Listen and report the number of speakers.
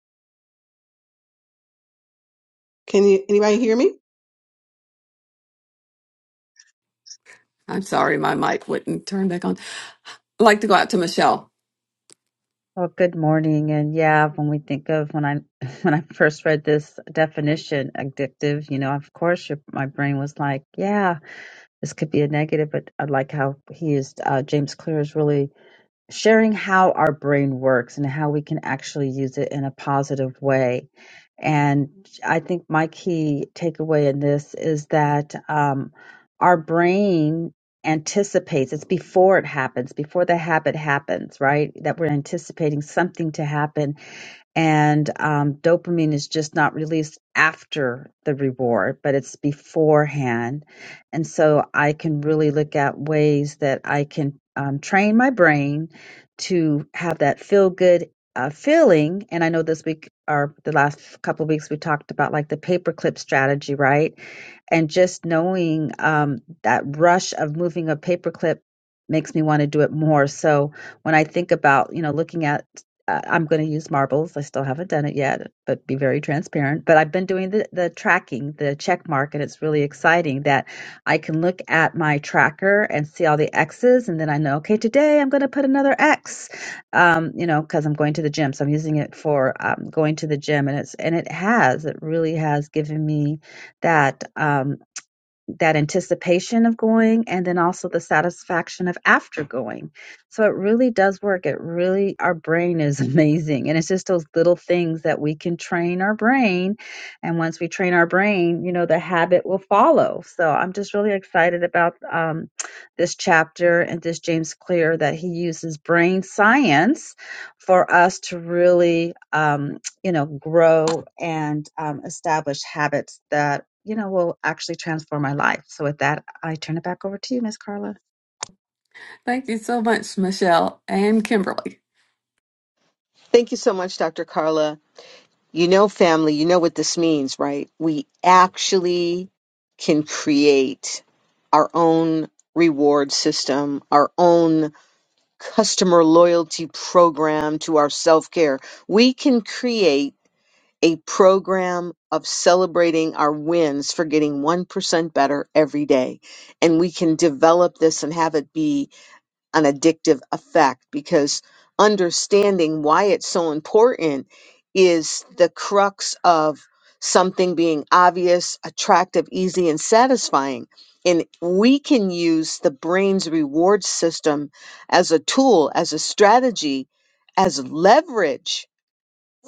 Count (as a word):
four